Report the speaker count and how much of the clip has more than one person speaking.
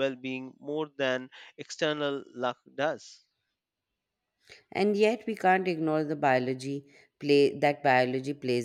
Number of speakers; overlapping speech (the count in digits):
2, no overlap